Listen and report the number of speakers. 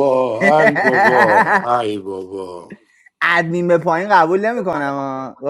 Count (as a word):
two